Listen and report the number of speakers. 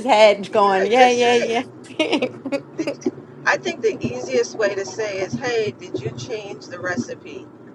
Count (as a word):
two